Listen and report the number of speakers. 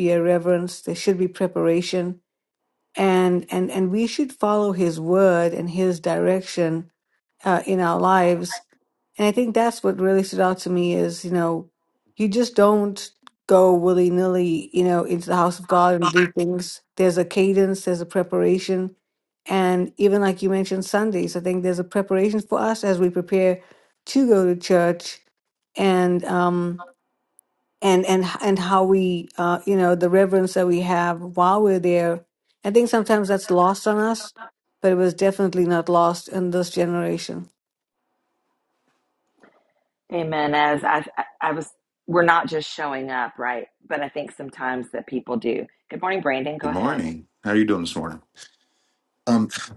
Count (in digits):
3